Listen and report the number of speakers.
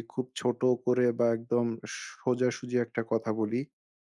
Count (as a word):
one